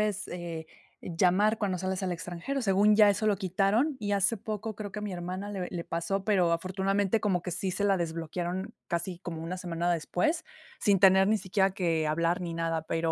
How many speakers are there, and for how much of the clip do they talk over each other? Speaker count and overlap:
1, no overlap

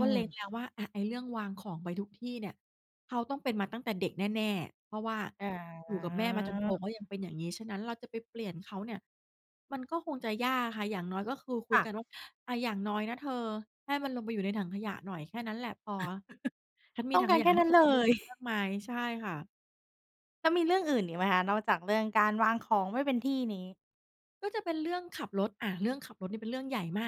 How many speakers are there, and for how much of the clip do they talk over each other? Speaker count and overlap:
2, about 8%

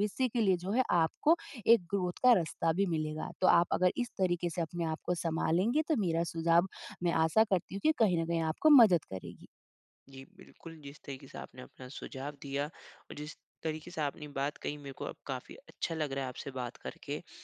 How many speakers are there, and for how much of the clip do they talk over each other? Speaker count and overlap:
2, no overlap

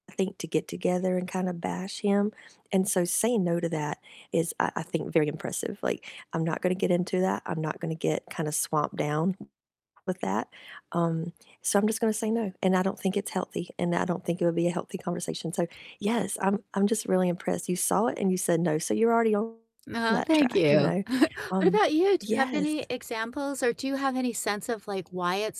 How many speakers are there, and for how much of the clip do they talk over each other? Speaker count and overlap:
2, about 6%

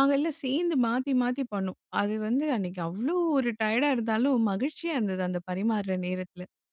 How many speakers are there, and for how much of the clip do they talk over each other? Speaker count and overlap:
1, no overlap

